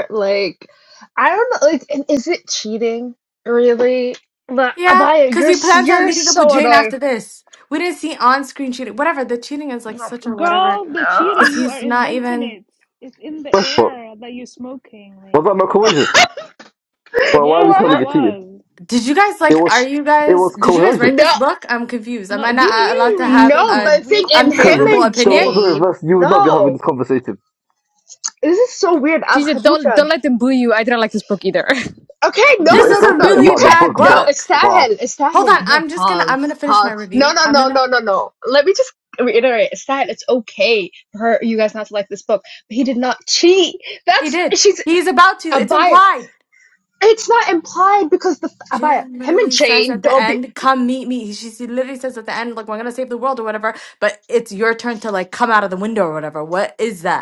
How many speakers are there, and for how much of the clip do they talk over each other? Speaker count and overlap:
five, about 34%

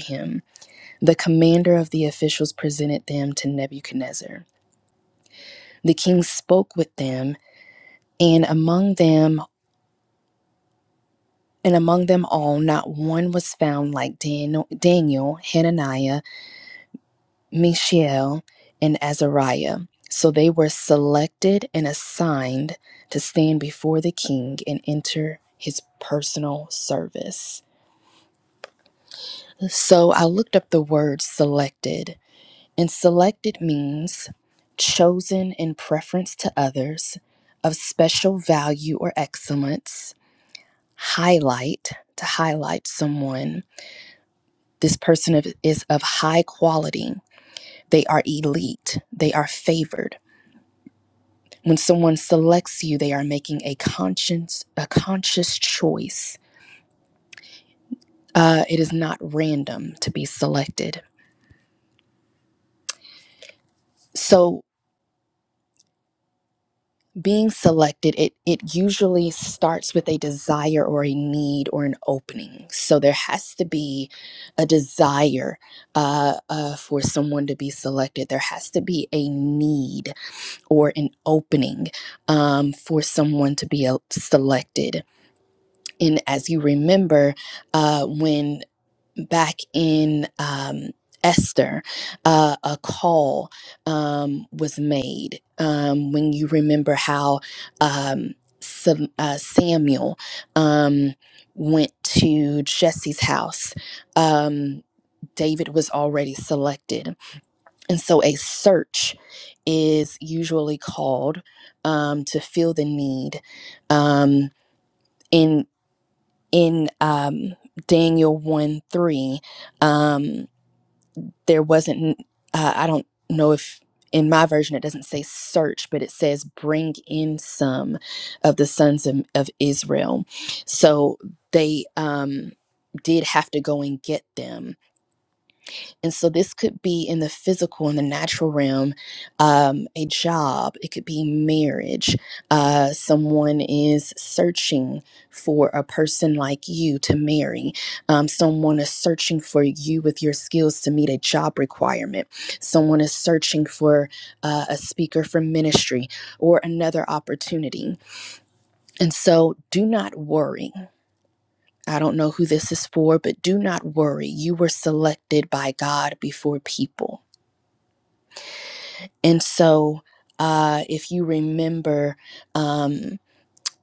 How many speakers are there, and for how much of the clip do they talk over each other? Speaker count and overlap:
one, no overlap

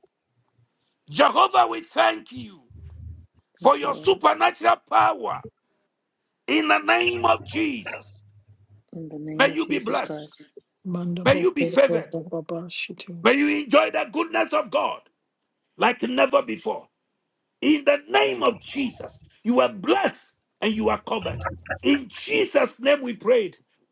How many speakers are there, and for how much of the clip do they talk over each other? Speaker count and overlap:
three, about 9%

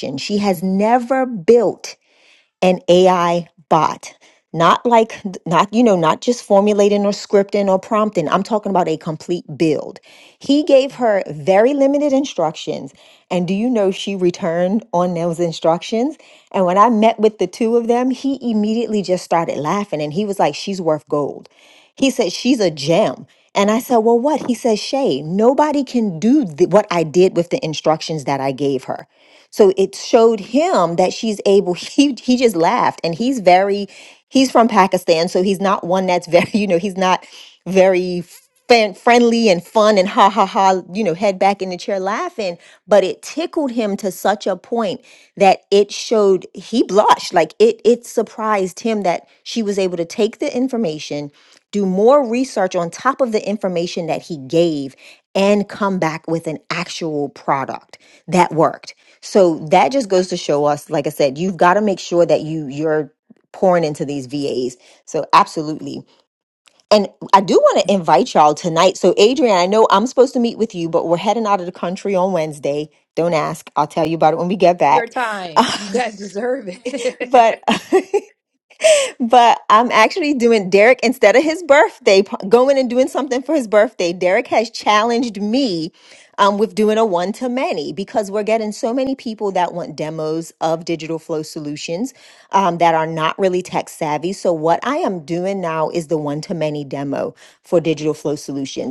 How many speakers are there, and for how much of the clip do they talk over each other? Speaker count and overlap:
two, under 1%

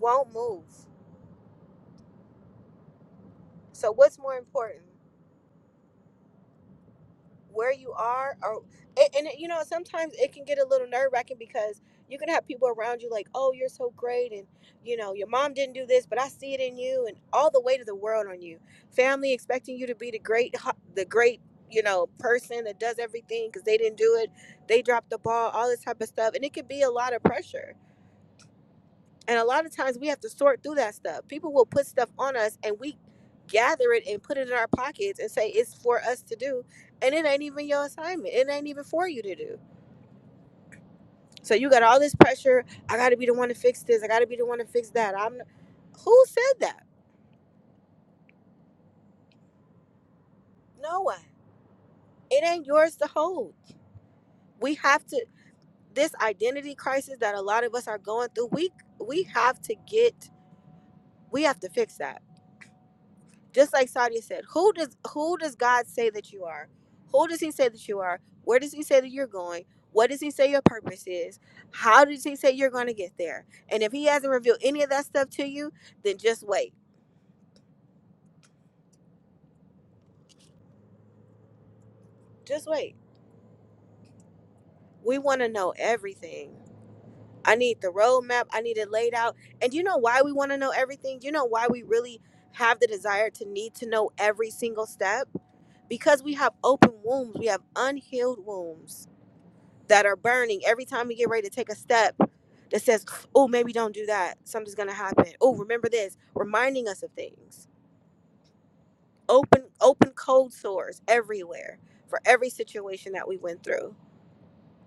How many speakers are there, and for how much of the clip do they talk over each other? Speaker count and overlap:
one, no overlap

